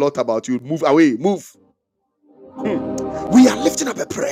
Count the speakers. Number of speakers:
one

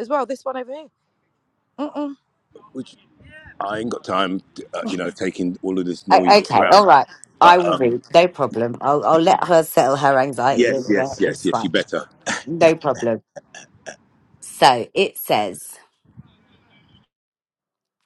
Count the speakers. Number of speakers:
three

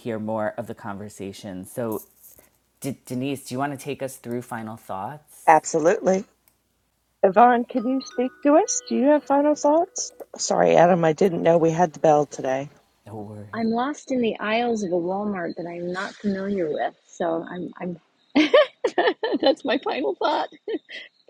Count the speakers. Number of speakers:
three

